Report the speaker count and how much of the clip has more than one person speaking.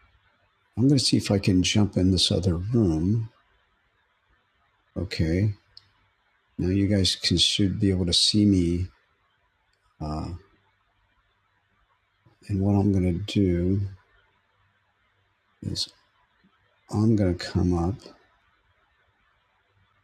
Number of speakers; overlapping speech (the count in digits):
1, no overlap